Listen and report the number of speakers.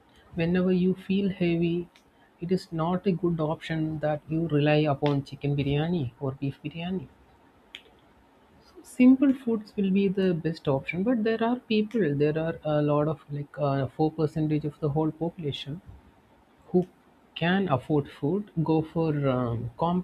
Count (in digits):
1